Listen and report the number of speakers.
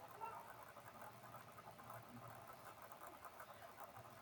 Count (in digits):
0